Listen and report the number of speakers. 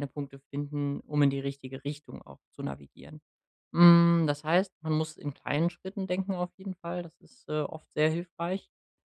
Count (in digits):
1